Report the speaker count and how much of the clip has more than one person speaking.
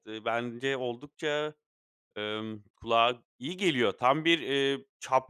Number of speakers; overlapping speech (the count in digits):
1, no overlap